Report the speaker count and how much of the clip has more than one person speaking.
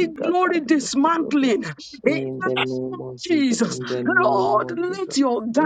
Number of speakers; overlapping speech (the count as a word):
two, about 71%